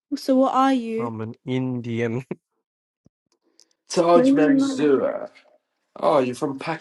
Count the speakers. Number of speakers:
three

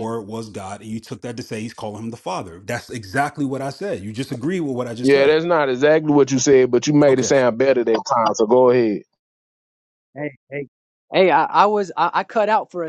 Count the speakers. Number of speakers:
three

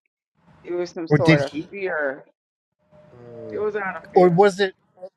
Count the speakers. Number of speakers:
two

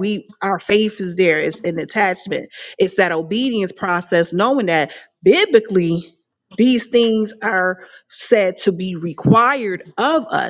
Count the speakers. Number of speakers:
one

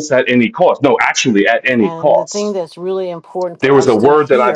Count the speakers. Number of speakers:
two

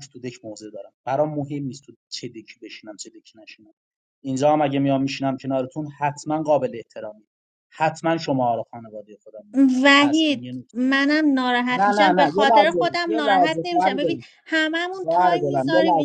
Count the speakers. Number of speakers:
two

